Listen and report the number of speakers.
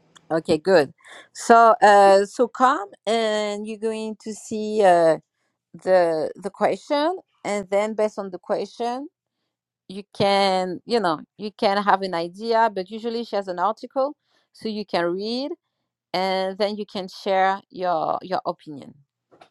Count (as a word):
one